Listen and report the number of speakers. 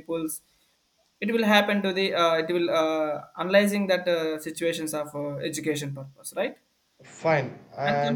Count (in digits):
2